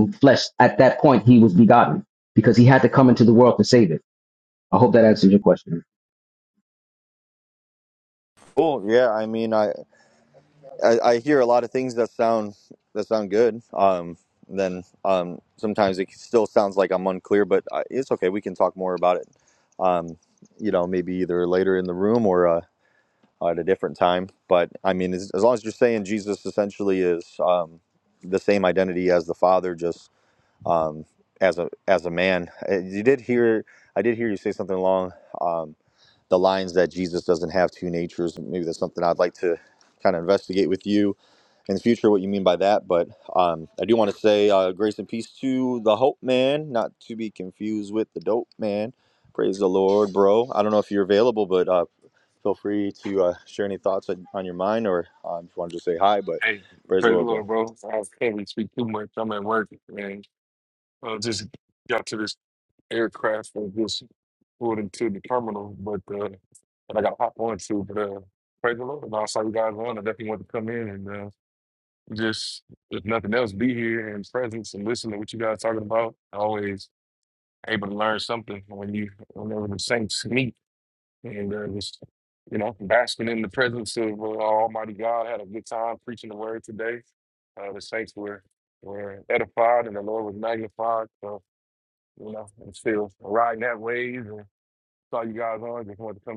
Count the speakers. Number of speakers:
three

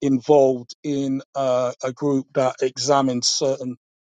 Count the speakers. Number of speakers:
one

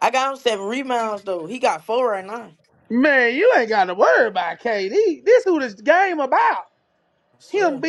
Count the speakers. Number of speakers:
two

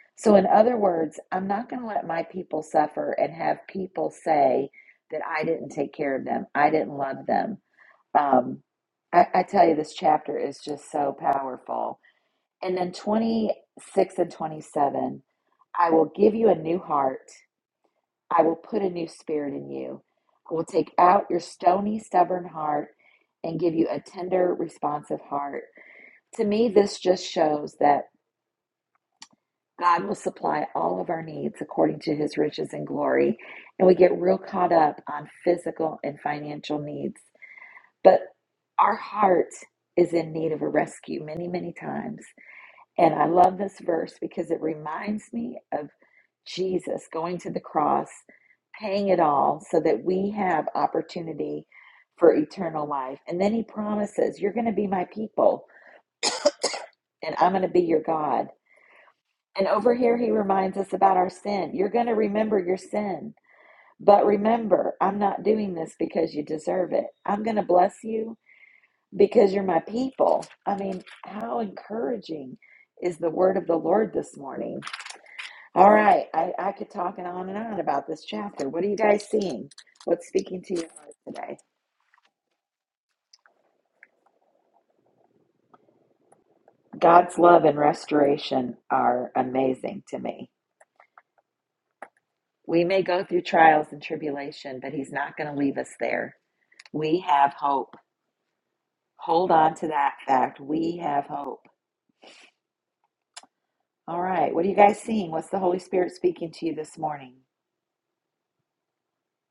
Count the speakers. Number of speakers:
one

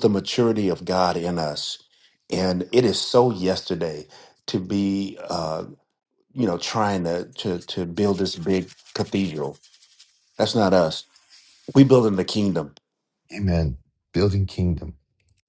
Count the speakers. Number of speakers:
two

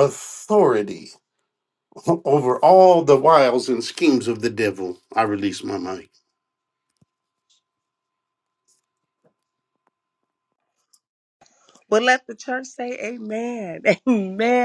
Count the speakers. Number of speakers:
two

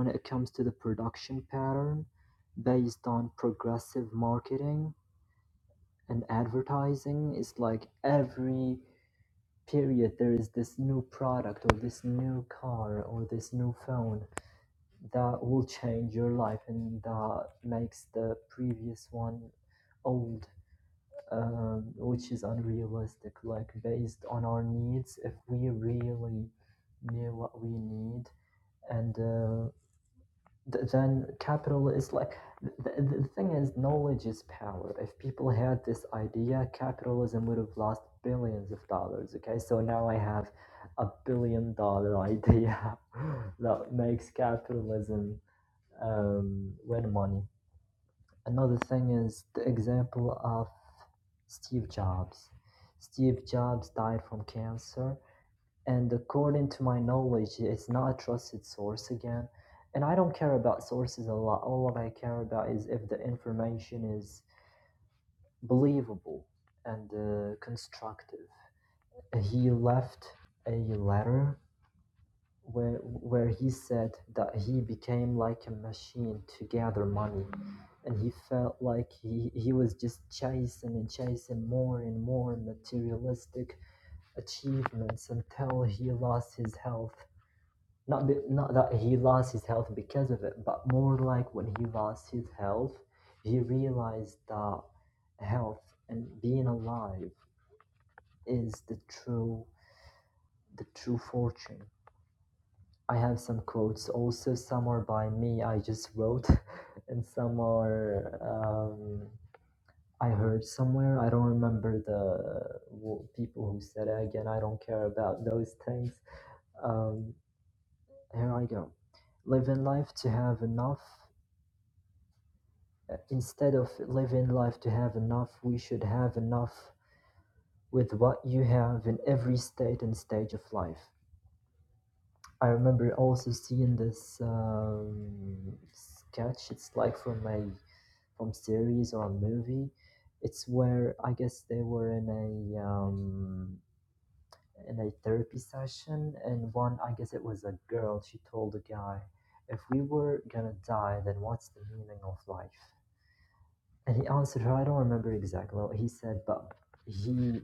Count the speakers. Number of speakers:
one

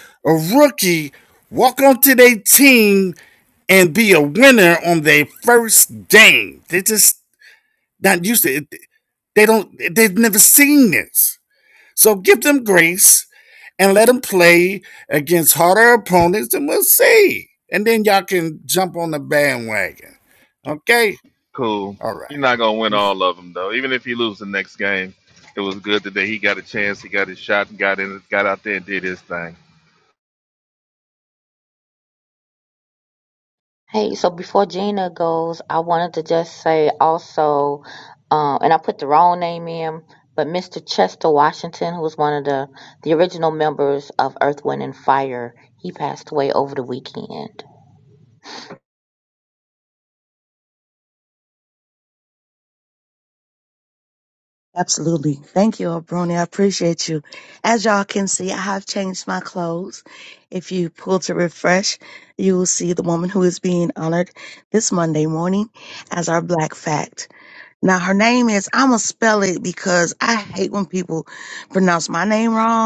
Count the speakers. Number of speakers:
four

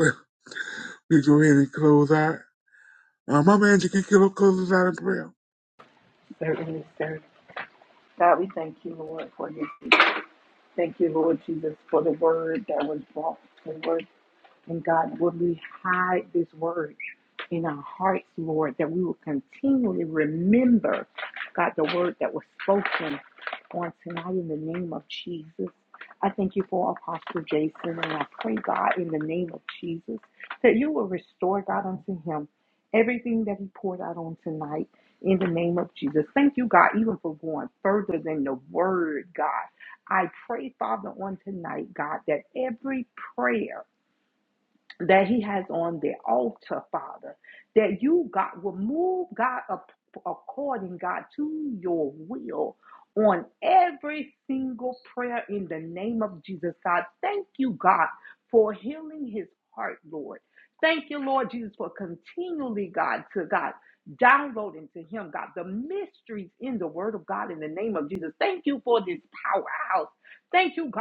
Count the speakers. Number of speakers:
two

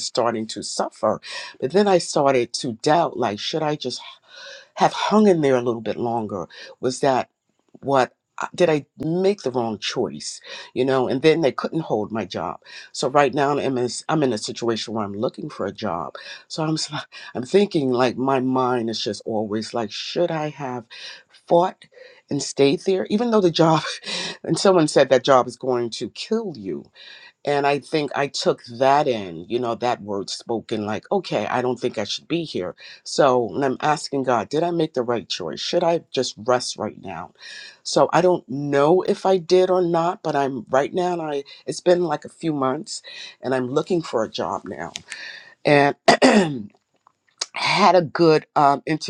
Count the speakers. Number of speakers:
one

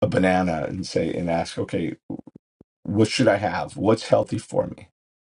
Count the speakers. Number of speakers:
one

